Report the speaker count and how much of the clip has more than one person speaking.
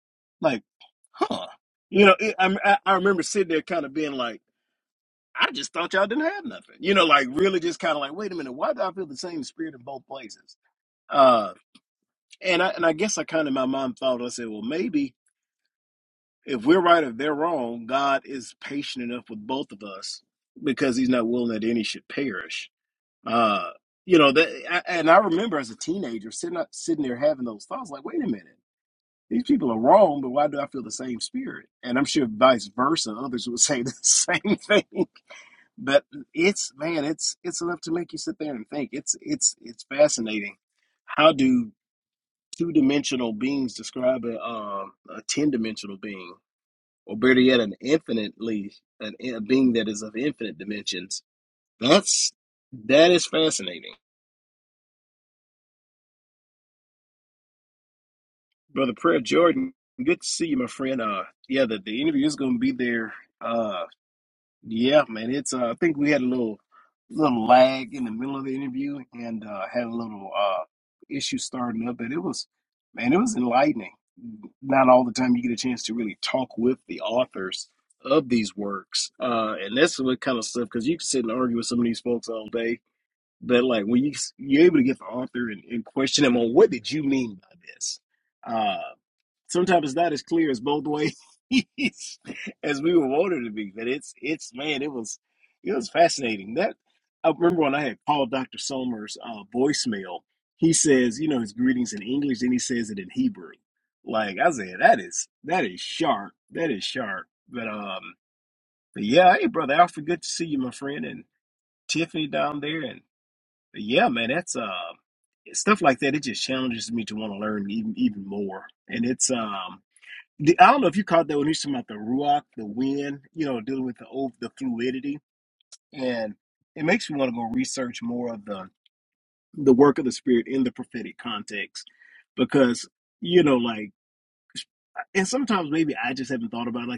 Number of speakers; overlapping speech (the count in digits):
1, no overlap